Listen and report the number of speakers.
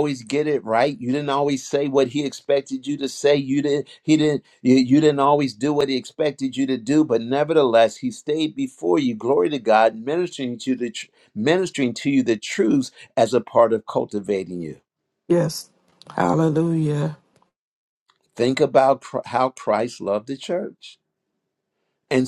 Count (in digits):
2